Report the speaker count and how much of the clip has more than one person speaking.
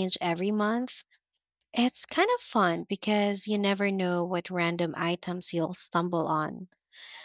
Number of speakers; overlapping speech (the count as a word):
one, no overlap